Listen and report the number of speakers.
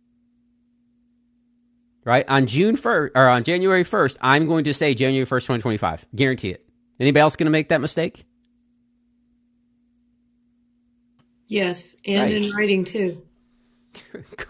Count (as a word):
two